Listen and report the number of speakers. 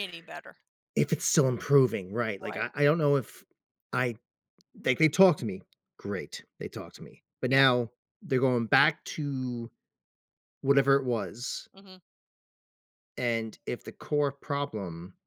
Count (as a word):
two